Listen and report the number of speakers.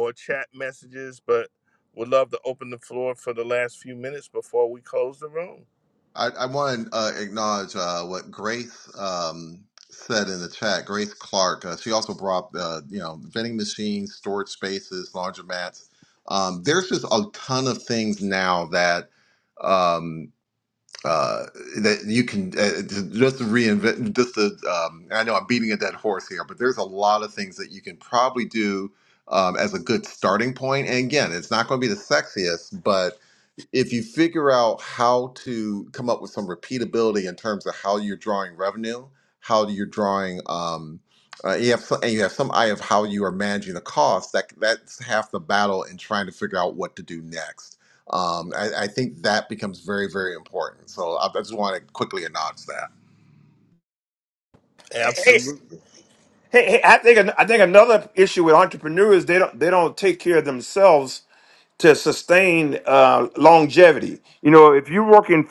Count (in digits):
3